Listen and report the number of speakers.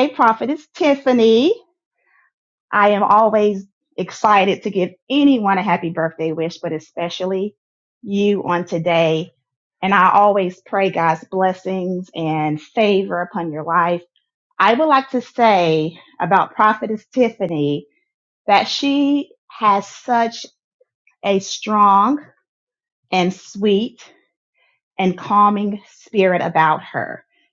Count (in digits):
1